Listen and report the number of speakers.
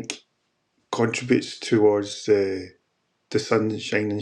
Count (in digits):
1